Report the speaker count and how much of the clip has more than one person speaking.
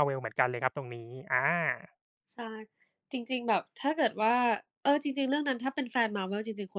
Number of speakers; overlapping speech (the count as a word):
two, no overlap